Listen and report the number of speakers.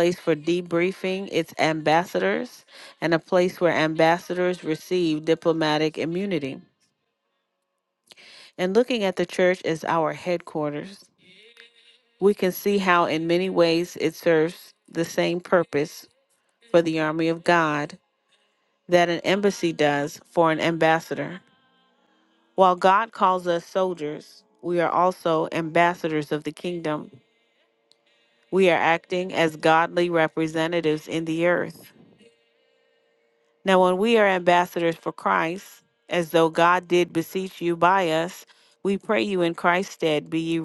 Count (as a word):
one